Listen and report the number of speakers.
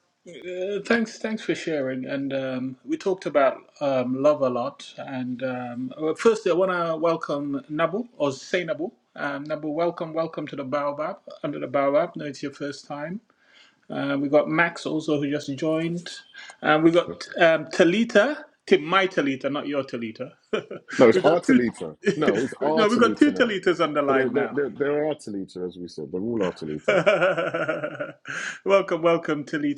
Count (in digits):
2